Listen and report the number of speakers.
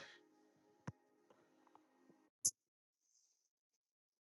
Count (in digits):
0